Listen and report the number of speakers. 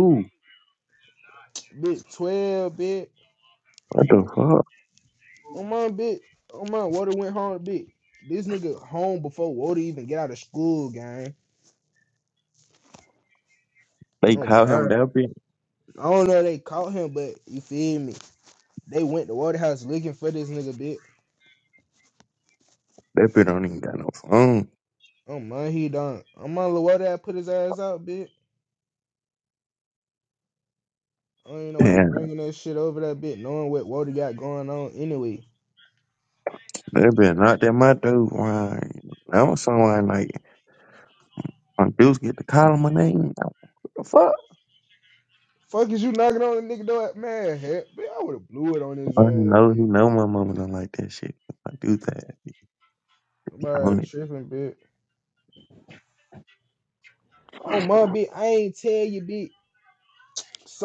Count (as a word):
two